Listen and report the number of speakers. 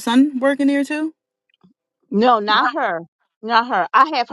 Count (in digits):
2